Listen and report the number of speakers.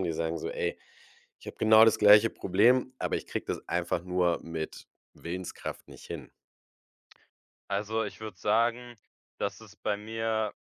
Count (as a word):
two